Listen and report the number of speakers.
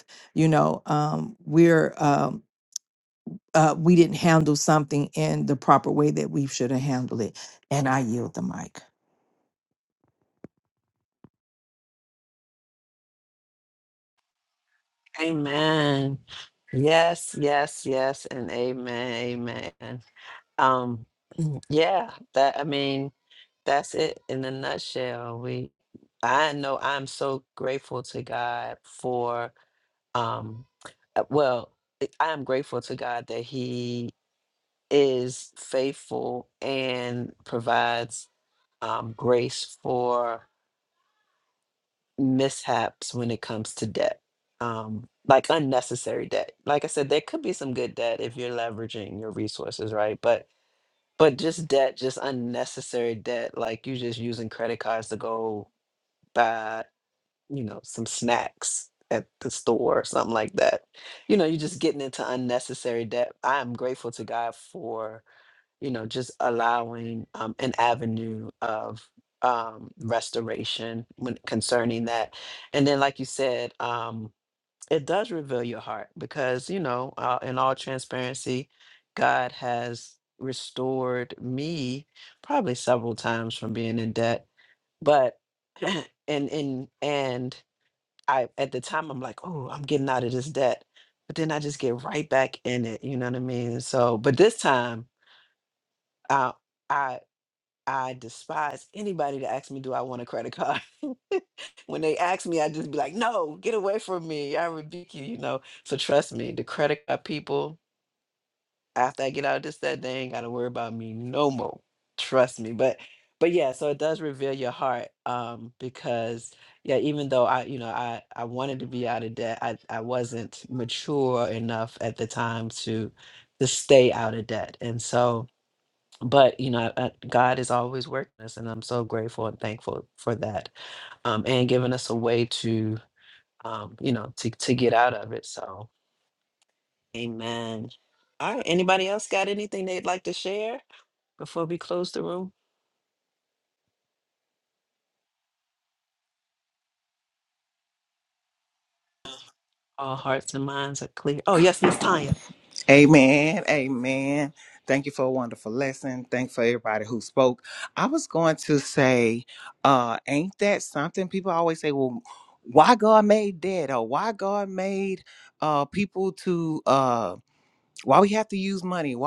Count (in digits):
3